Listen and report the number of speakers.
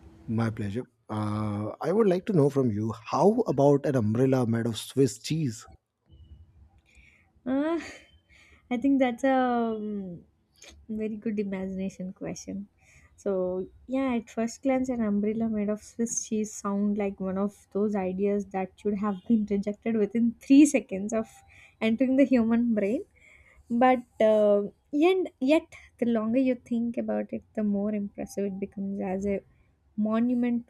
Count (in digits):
2